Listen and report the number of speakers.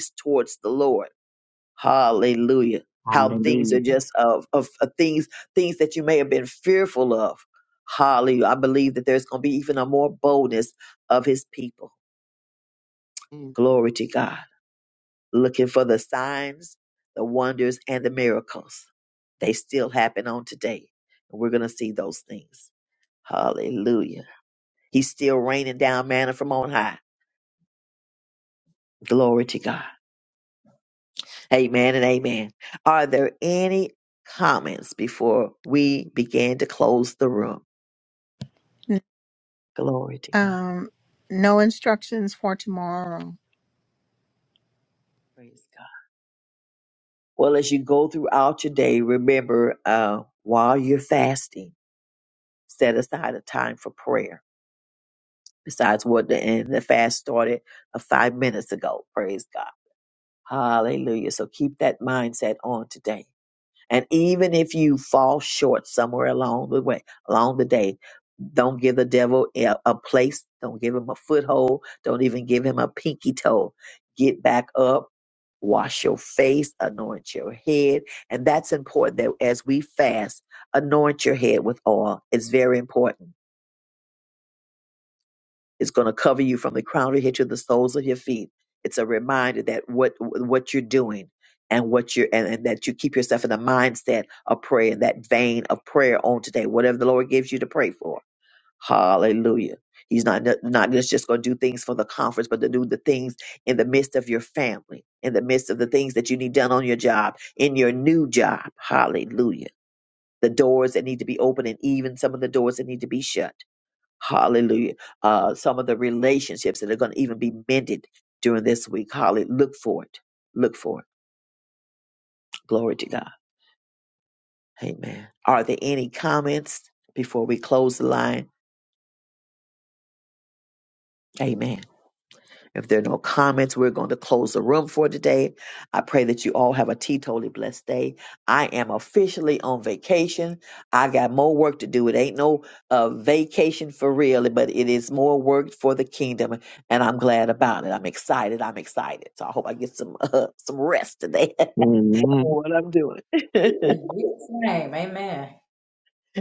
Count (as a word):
four